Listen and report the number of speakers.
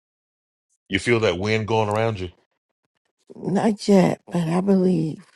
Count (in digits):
2